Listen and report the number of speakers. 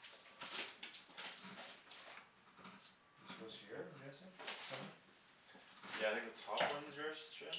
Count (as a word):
two